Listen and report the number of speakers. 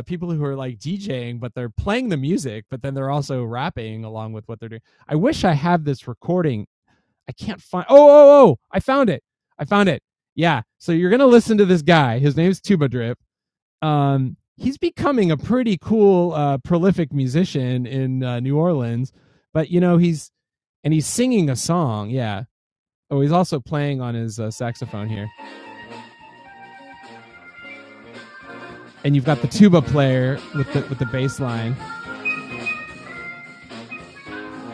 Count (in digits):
1